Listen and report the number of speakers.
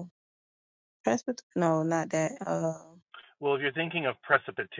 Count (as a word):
two